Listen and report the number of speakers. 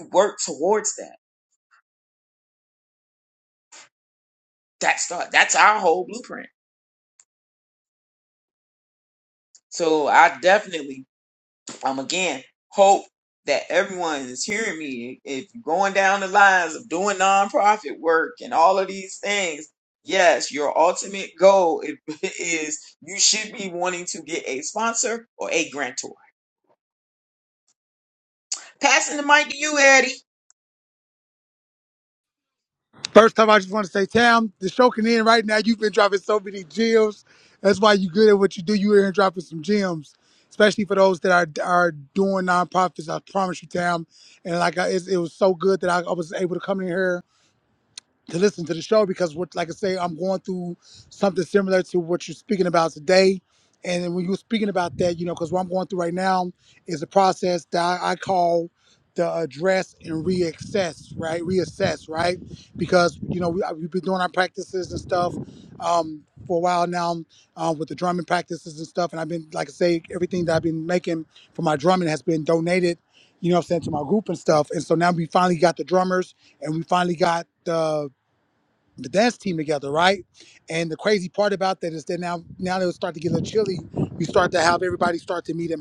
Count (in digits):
2